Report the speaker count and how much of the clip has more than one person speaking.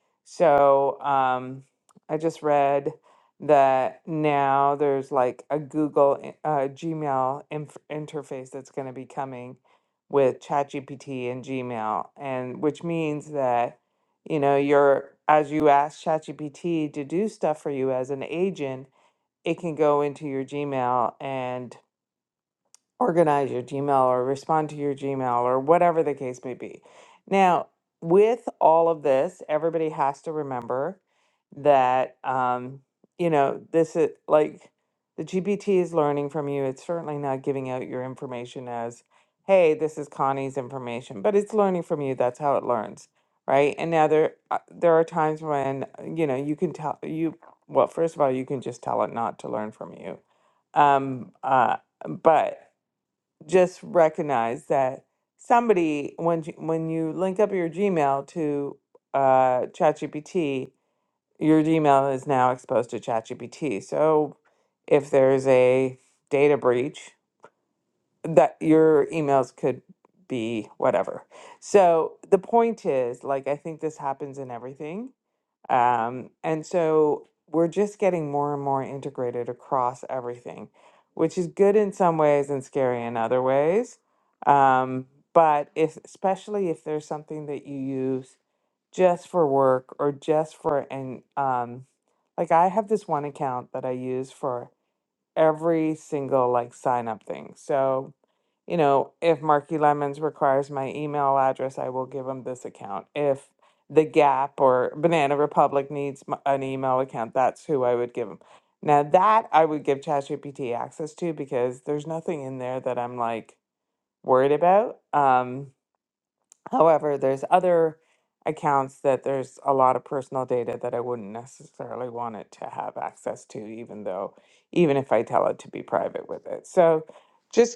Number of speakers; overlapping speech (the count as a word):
one, no overlap